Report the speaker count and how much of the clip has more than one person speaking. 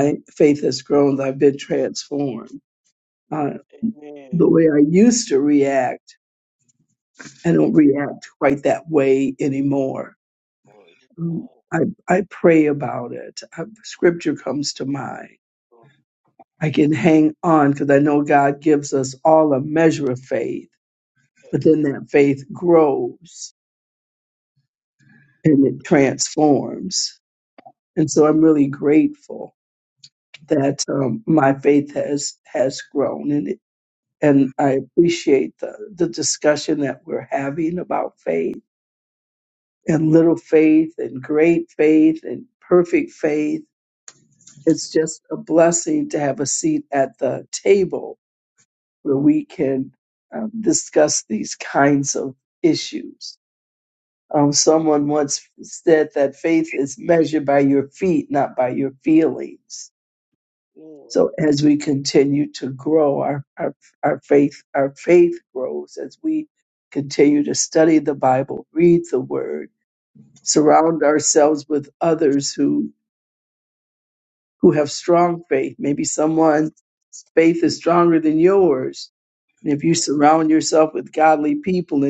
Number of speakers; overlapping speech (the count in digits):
2, under 1%